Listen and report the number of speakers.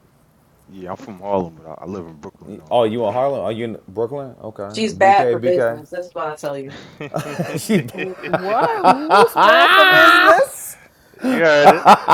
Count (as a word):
four